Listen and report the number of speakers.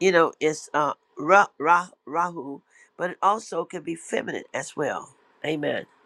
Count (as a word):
one